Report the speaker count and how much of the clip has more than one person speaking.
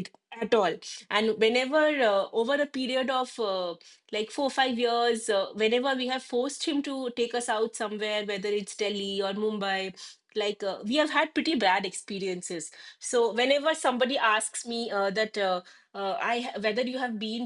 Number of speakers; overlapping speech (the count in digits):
1, no overlap